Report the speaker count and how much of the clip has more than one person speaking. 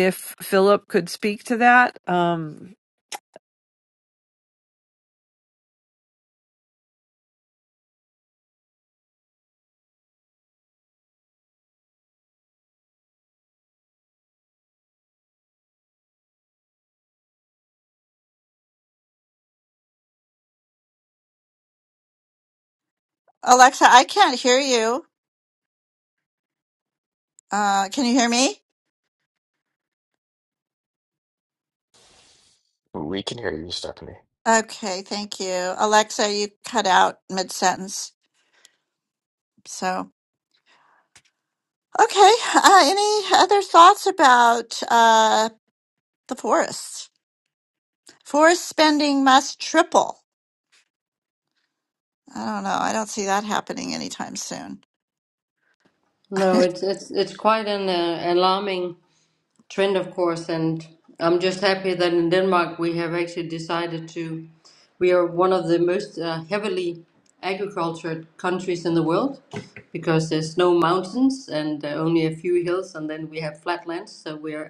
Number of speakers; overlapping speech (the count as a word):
four, no overlap